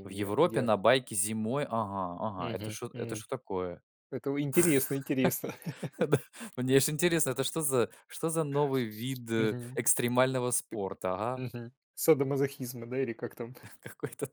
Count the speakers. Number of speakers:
2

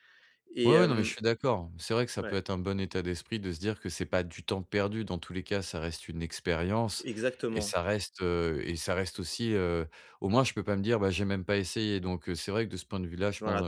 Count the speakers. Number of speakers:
2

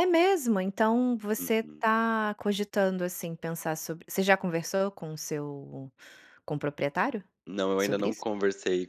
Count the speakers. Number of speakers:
2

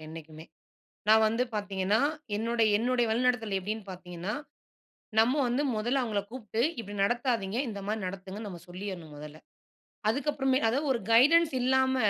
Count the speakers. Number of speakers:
1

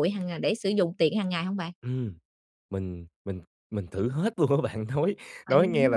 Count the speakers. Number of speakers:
2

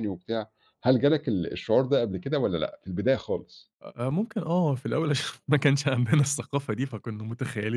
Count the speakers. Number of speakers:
2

